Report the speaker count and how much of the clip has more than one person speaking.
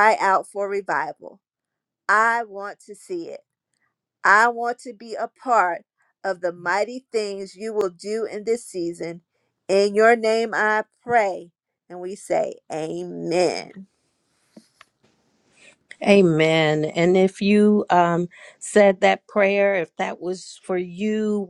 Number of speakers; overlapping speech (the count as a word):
two, no overlap